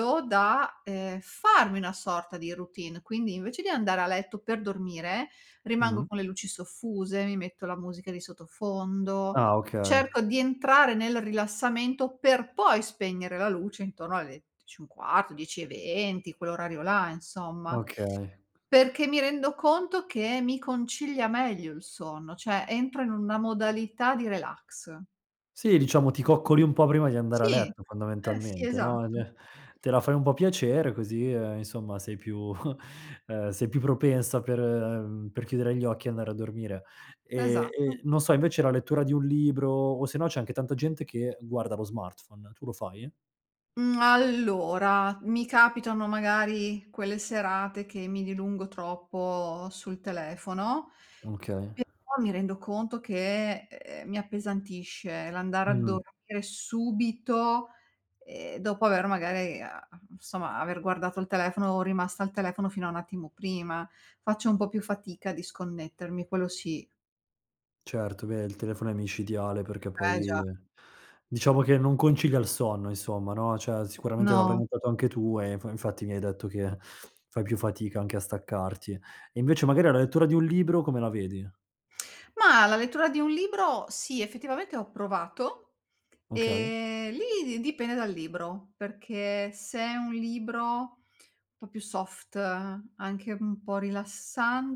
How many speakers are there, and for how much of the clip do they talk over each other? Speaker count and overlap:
two, about 4%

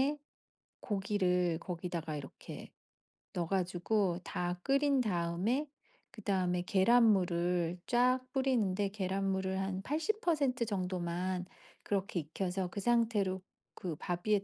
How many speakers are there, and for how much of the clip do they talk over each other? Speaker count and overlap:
one, no overlap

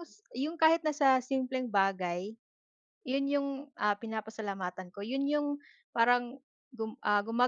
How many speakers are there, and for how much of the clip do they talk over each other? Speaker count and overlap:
one, no overlap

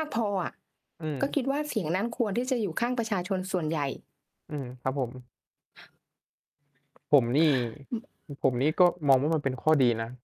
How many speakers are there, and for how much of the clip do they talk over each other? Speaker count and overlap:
two, about 1%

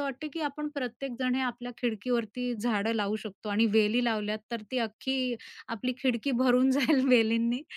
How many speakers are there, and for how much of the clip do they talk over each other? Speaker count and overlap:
one, no overlap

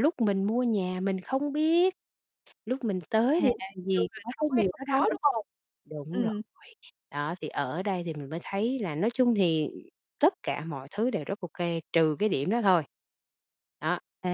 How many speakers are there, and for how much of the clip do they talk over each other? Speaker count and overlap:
two, about 4%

